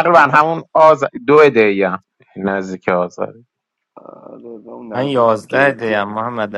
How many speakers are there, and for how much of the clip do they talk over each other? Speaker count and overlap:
3, about 21%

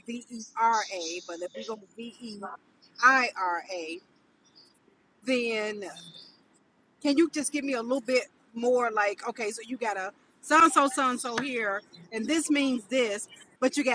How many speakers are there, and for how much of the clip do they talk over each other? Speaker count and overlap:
1, no overlap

